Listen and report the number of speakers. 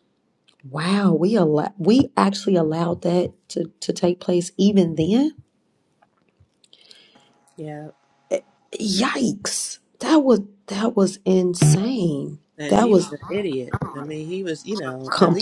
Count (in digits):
2